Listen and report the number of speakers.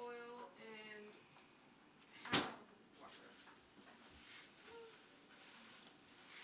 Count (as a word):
one